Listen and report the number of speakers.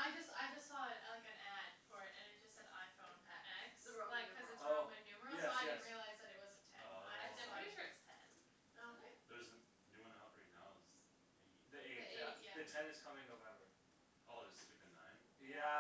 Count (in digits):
4